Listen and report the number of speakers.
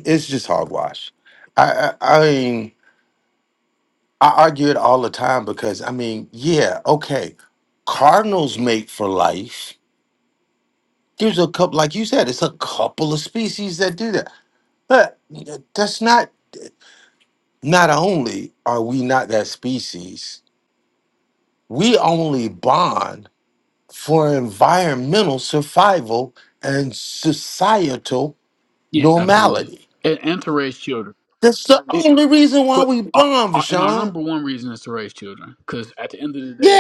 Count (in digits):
2